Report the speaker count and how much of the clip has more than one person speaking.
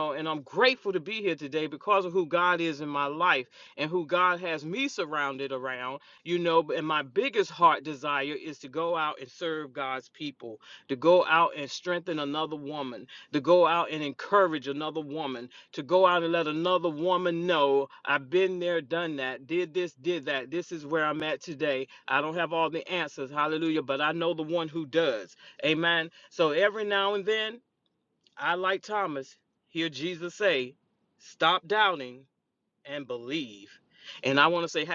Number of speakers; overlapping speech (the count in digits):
1, no overlap